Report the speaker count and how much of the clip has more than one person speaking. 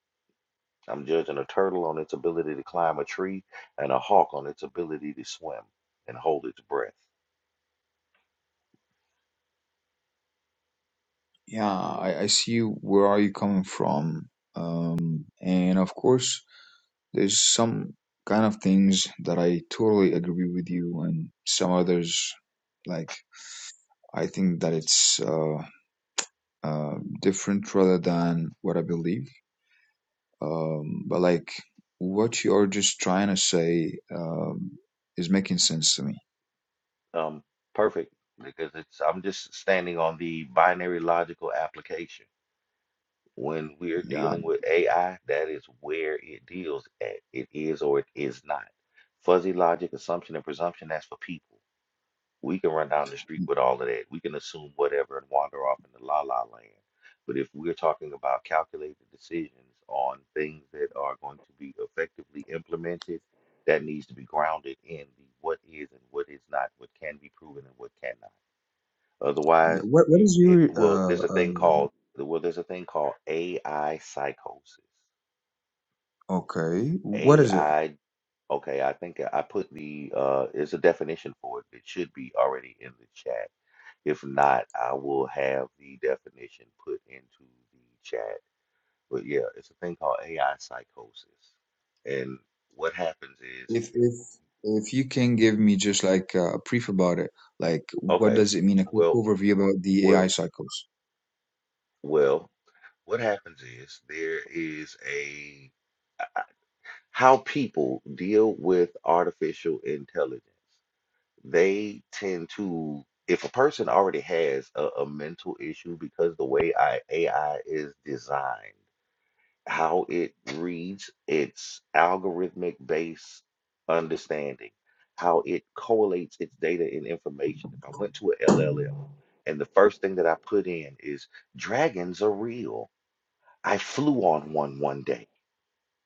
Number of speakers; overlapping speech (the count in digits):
2, about 3%